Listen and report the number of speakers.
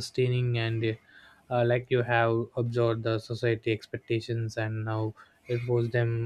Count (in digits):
1